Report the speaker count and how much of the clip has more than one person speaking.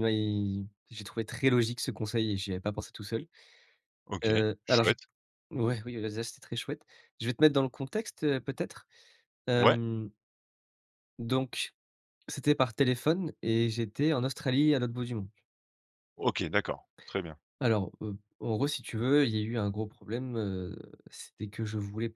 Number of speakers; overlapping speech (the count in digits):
2, about 3%